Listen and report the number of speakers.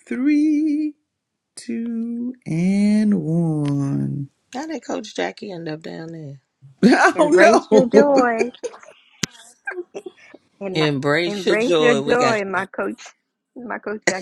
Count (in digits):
3